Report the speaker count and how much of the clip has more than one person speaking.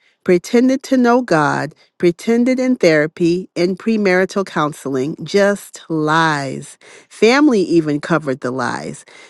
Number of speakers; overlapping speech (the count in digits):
1, no overlap